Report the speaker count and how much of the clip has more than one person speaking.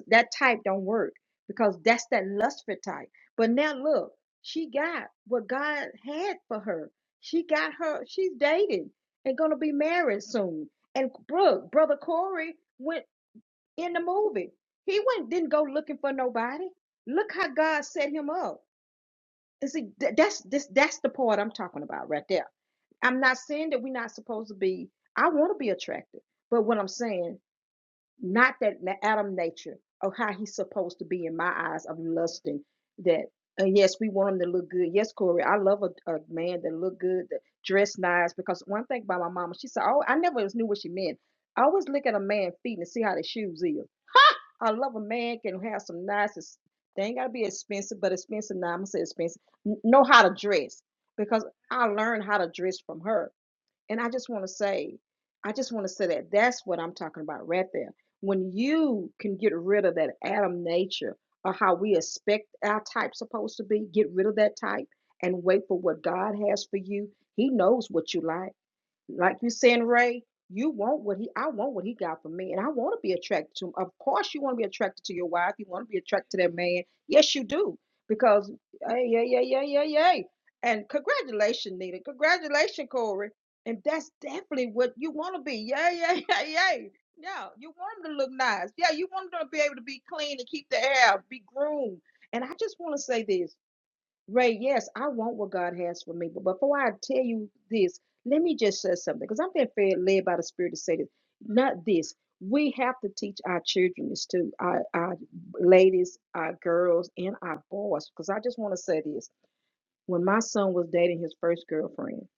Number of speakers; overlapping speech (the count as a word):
one, no overlap